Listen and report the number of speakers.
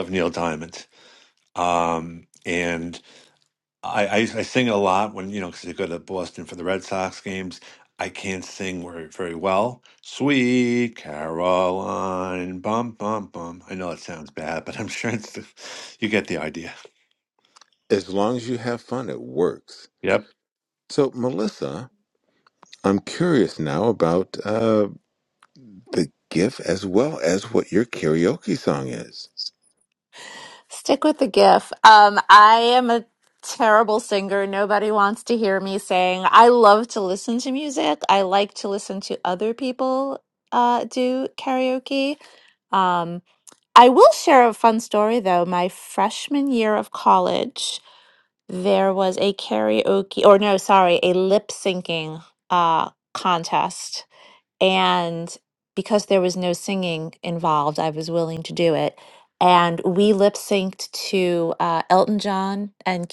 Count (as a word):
three